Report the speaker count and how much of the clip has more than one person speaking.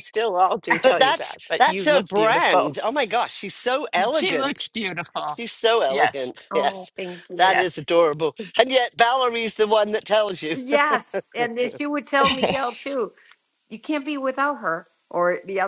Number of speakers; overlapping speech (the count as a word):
three, about 21%